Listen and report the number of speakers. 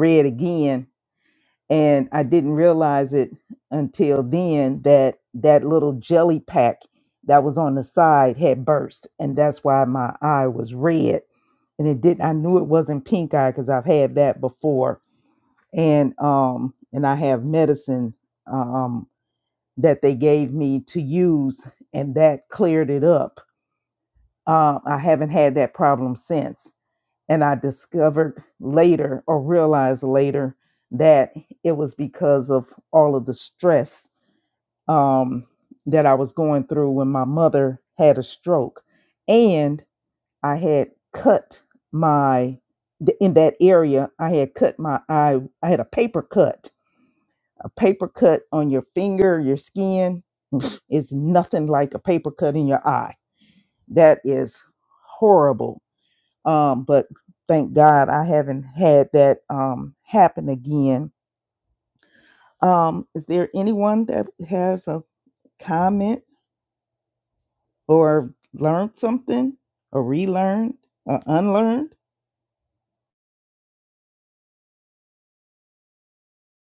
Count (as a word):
one